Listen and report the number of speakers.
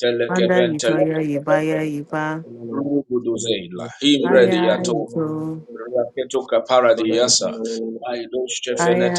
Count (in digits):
3